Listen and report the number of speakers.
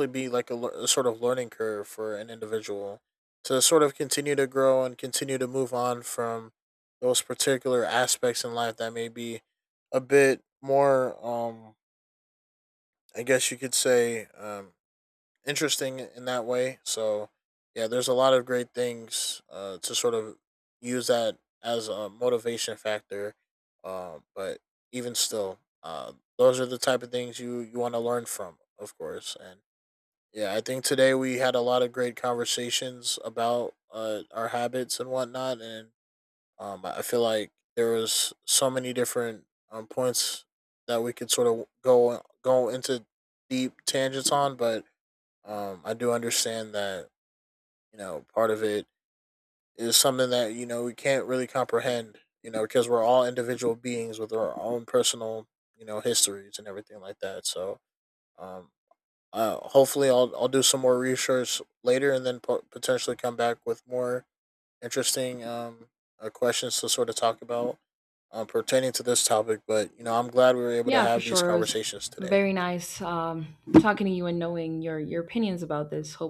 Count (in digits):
2